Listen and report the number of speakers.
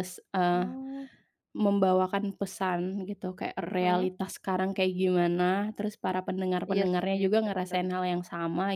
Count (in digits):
2